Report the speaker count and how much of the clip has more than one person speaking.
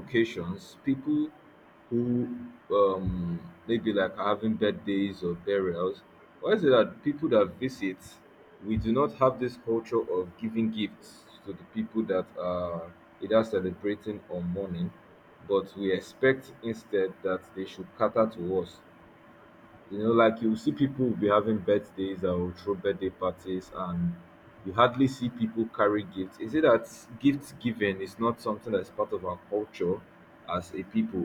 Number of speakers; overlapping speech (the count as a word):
one, no overlap